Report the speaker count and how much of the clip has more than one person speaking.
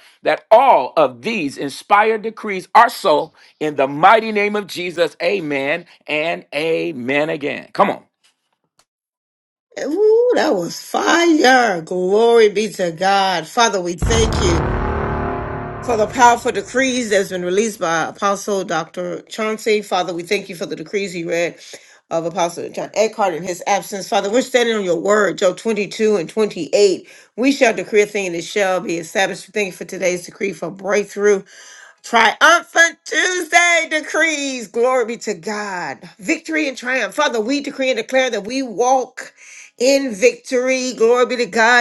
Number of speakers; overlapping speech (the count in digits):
2, no overlap